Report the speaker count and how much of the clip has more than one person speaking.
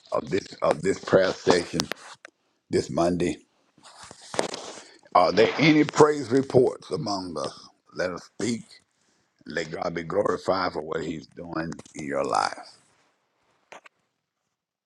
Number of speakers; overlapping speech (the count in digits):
1, no overlap